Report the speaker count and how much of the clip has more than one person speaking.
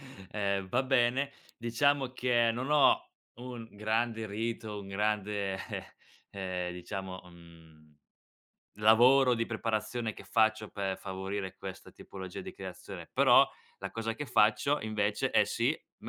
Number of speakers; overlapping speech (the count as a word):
one, no overlap